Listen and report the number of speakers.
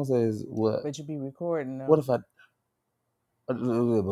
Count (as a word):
two